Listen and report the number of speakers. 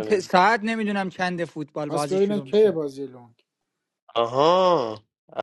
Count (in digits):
3